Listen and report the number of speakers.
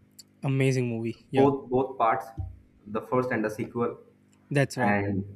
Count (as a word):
two